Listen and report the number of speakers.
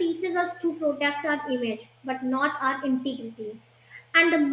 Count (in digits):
1